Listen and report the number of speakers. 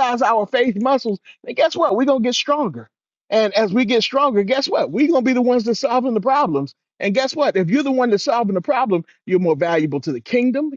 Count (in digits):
1